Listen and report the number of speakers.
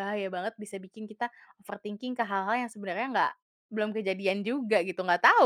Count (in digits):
1